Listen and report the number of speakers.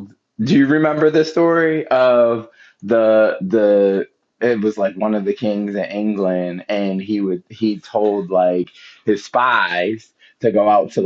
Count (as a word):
one